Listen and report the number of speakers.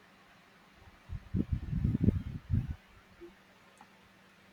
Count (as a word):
zero